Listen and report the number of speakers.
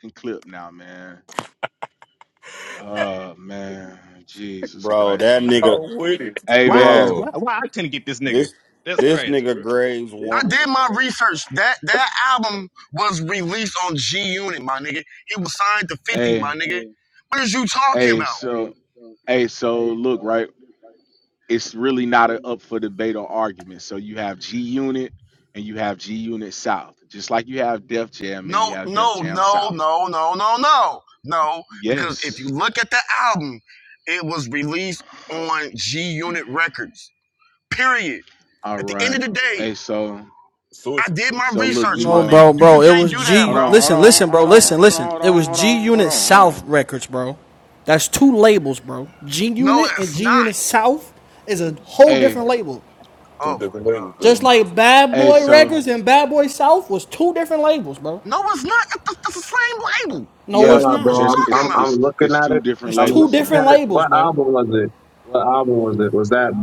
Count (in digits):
7